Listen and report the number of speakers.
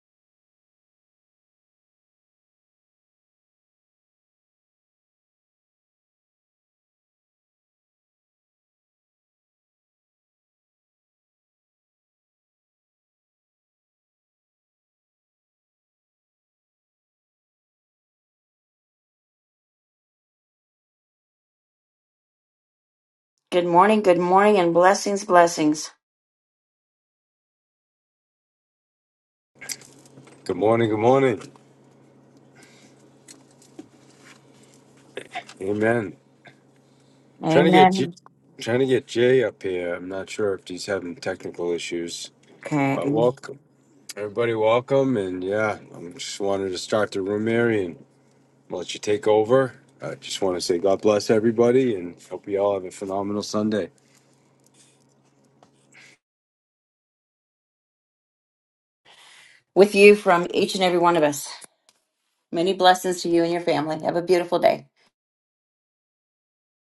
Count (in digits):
2